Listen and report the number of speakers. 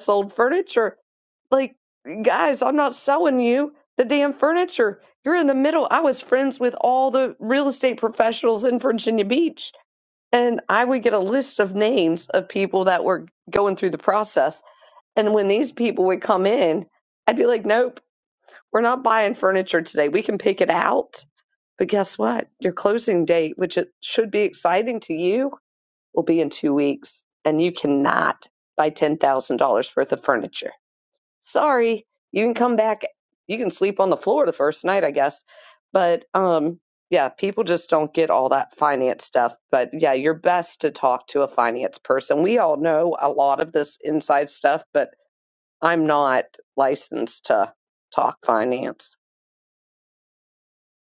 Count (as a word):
one